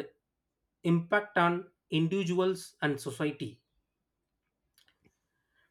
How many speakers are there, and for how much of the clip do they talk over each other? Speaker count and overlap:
1, no overlap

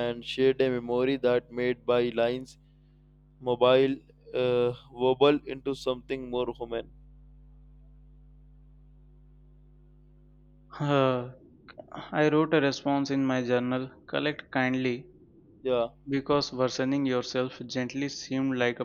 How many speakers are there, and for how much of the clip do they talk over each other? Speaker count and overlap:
2, no overlap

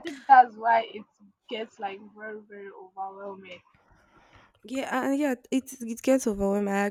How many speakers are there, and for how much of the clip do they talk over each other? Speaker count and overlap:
2, no overlap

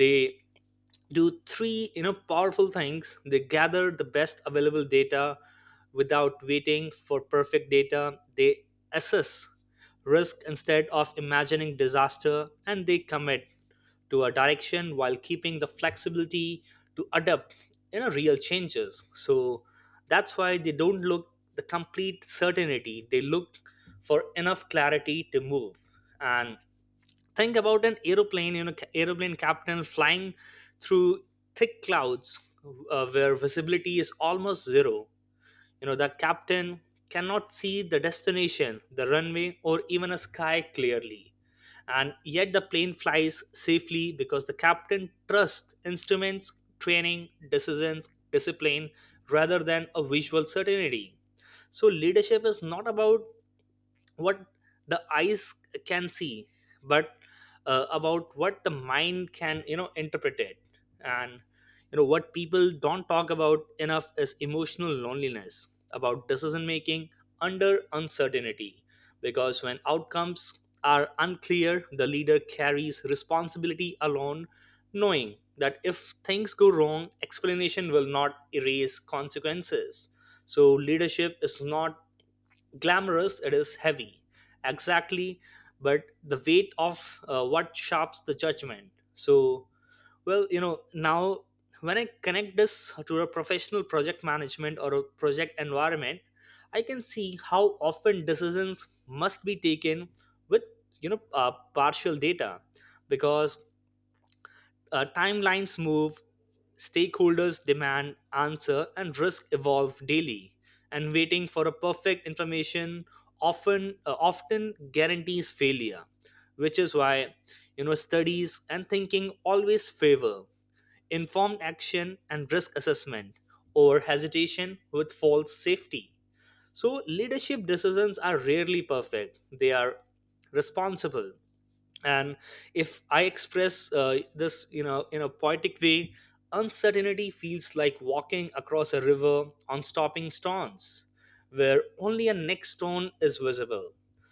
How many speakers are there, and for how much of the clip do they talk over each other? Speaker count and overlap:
1, no overlap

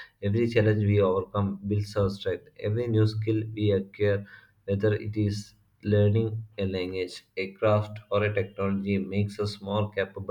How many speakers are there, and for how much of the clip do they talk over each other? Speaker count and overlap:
1, no overlap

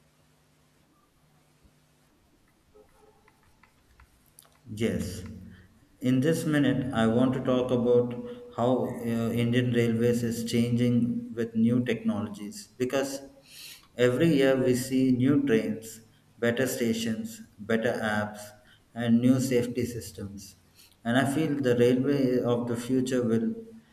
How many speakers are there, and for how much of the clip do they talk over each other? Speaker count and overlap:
1, no overlap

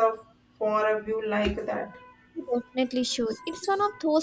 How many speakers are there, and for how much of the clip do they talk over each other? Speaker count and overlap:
2, no overlap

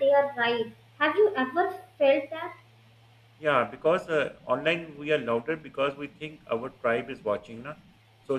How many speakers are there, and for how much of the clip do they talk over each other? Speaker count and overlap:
2, no overlap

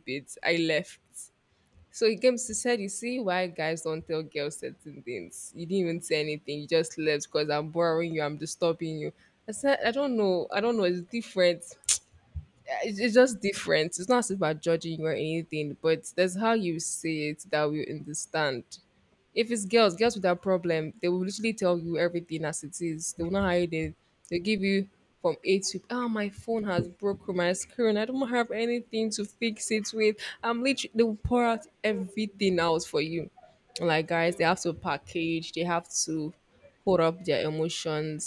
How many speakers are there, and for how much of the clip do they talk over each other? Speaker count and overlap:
1, no overlap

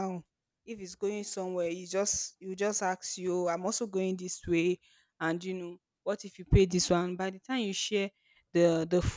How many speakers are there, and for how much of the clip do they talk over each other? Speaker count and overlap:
1, no overlap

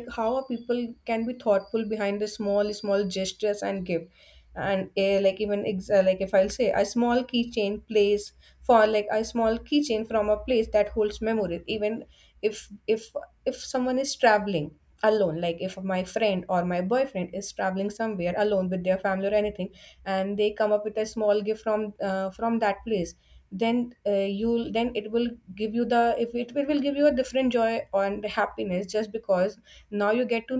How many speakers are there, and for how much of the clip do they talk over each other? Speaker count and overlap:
1, no overlap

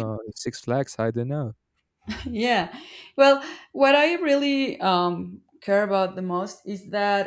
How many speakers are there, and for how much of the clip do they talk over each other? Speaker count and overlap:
2, no overlap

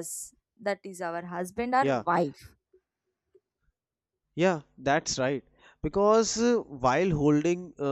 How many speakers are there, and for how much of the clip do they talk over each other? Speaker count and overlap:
2, about 3%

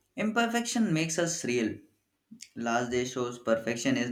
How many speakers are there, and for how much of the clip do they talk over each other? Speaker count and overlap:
1, no overlap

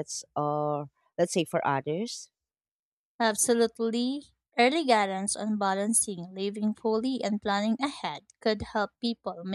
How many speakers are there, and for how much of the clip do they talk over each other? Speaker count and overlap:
2, no overlap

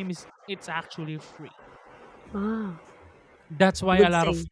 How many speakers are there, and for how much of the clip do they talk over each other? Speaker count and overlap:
2, about 12%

